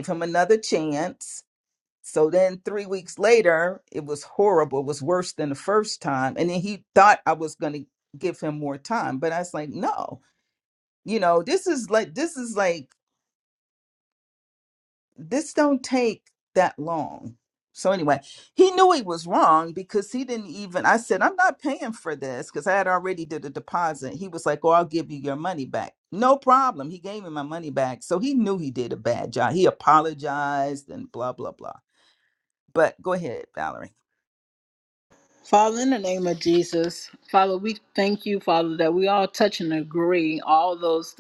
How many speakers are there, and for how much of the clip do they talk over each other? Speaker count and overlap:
2, no overlap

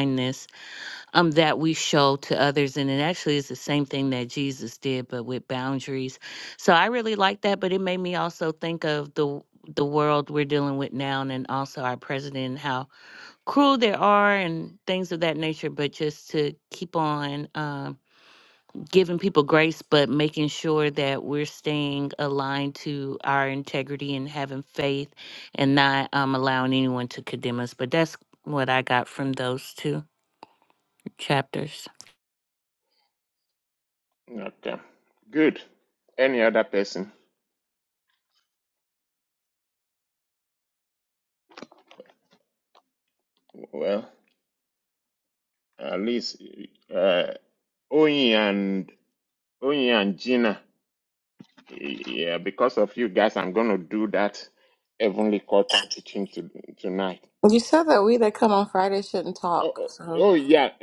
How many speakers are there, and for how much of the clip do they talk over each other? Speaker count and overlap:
3, about 1%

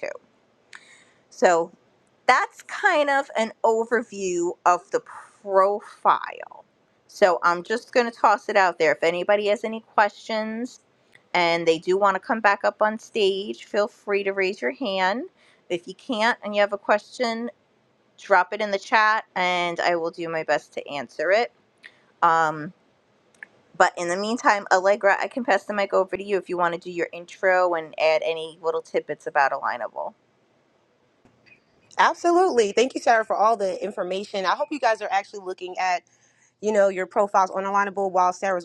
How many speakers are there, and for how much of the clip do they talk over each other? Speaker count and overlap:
2, no overlap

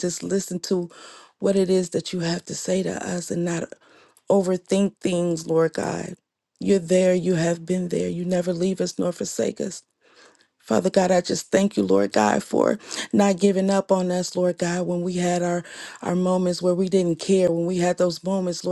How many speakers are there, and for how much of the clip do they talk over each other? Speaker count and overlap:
1, no overlap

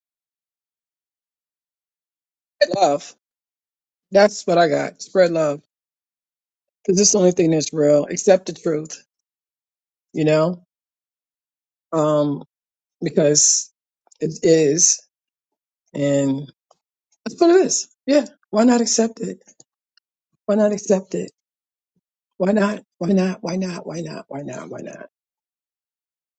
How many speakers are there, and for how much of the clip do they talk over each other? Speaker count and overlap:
1, no overlap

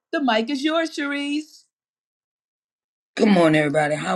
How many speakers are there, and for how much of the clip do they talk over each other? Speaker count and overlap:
2, no overlap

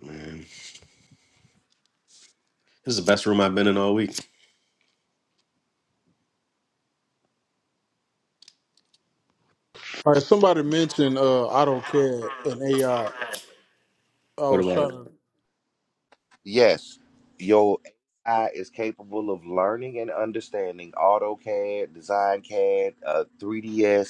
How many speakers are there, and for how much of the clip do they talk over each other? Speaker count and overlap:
3, about 2%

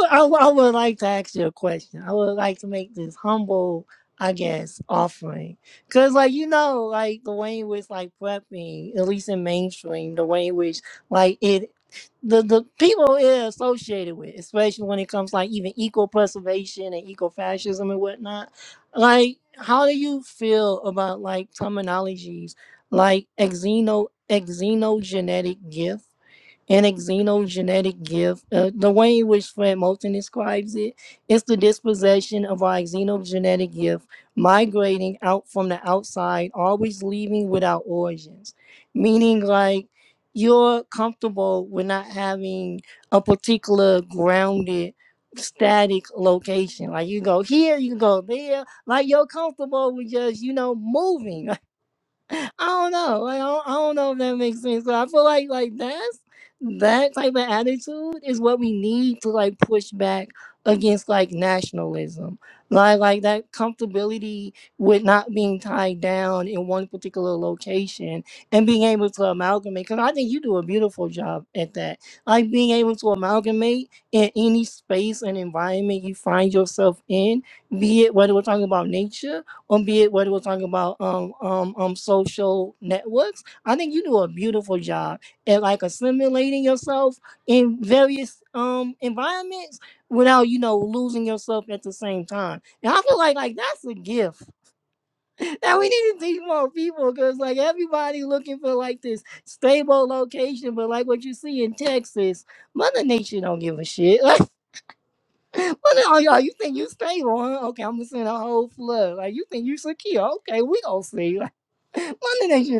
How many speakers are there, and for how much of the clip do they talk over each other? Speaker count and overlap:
1, no overlap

